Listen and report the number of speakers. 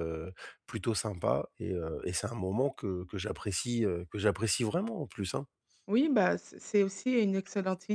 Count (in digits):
2